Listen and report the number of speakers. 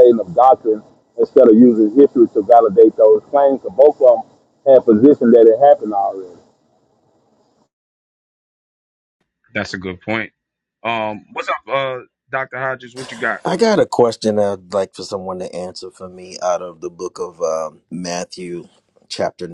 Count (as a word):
three